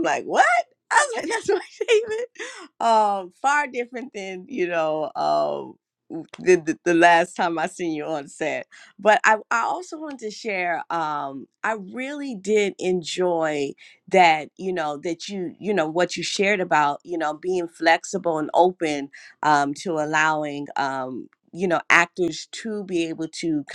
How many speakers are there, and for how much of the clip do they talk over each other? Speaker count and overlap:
1, no overlap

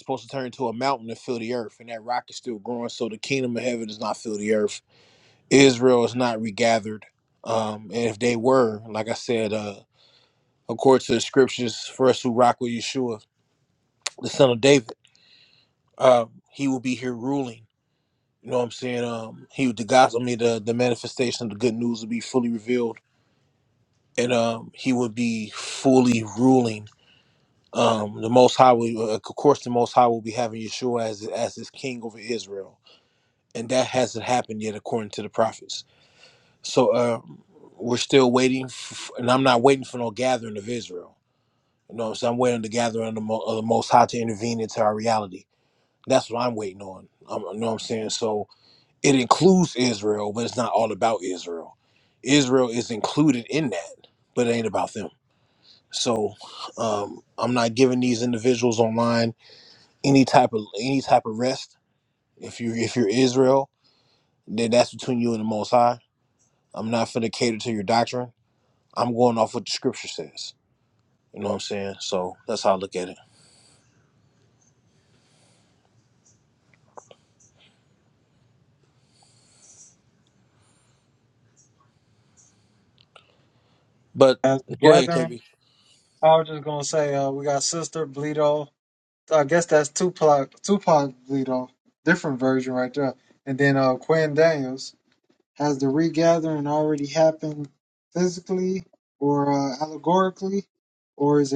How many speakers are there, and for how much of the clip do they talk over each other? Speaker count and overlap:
2, under 1%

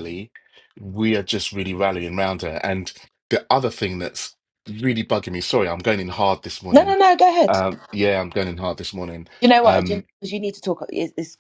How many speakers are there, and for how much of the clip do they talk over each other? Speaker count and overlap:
2, about 6%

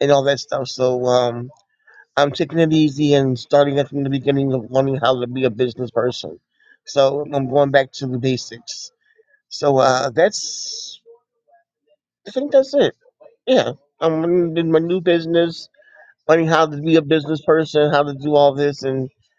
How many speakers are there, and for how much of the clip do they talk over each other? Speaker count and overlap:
1, no overlap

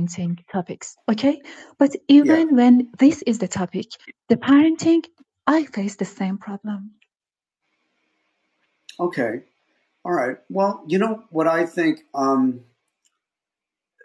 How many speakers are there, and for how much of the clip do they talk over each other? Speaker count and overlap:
2, about 2%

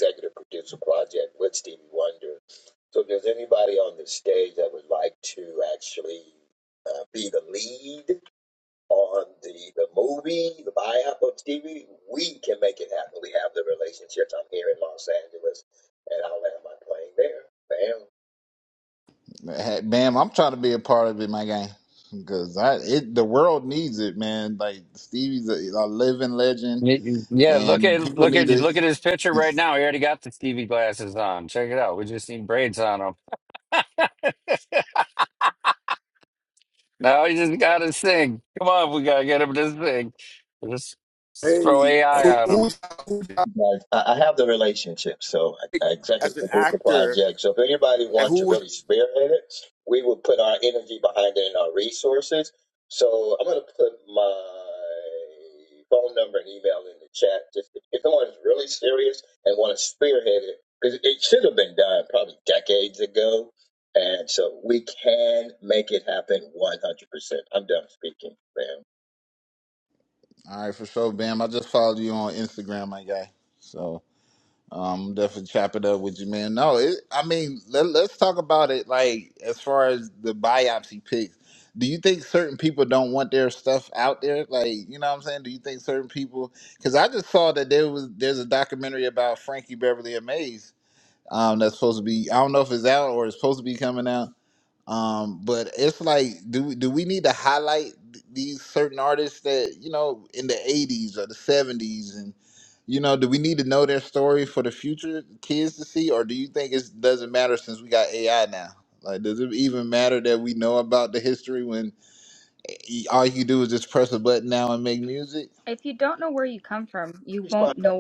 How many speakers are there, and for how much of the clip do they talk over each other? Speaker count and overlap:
5, about 3%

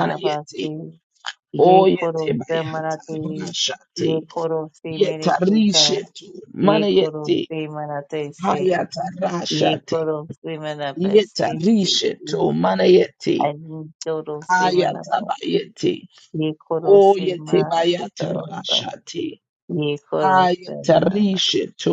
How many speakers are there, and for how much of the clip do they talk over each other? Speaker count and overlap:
2, about 51%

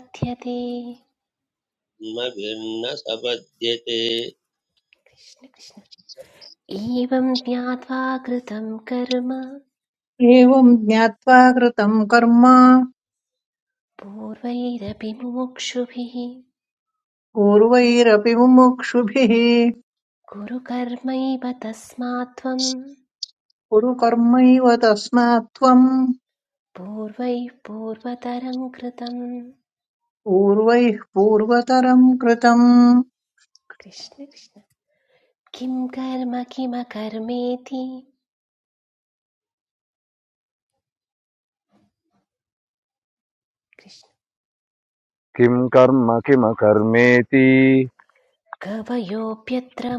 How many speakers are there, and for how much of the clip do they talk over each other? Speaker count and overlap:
4, no overlap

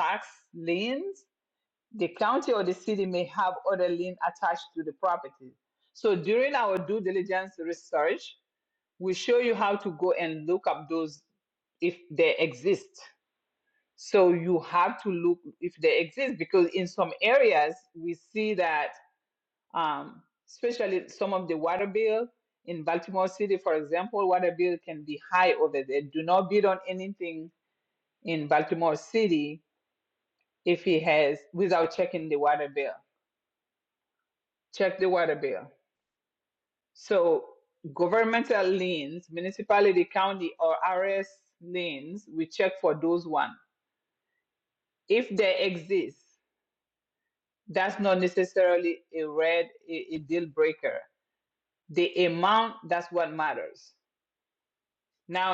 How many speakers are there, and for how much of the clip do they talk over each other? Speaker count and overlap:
1, no overlap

